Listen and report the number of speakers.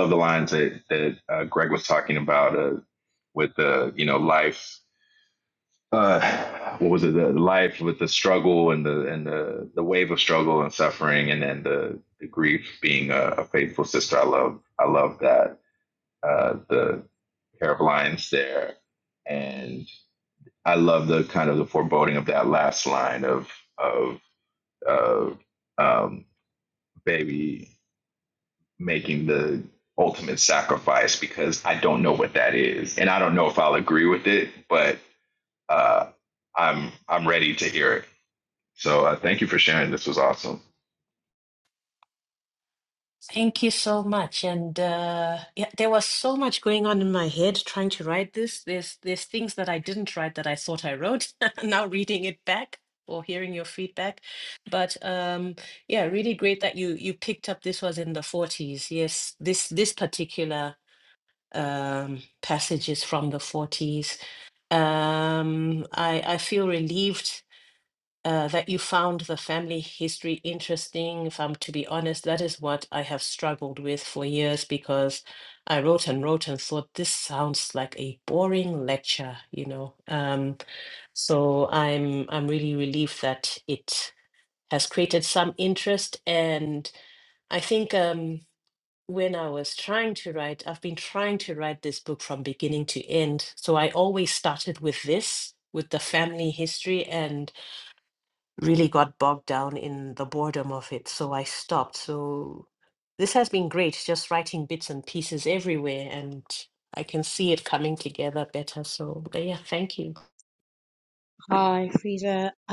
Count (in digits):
3